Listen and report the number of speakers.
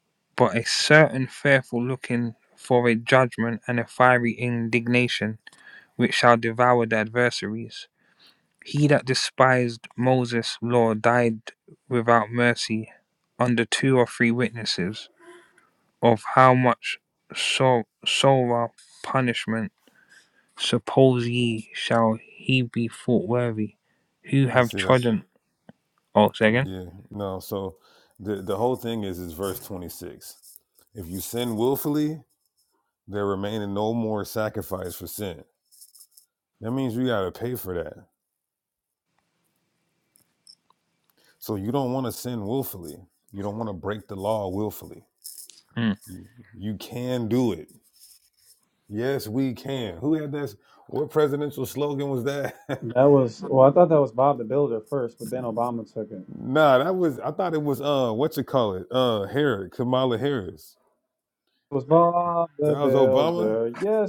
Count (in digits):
3